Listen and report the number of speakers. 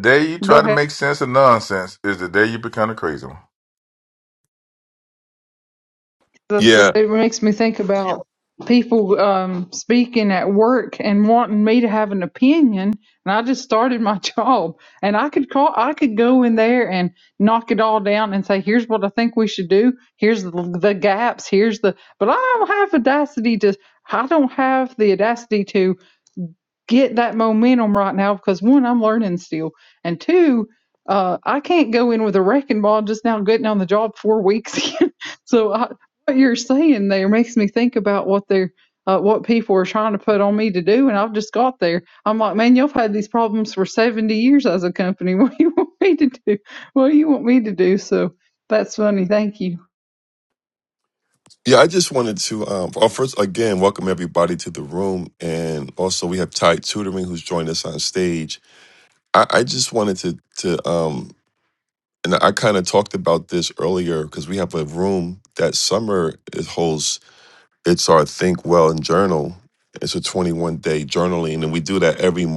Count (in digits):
3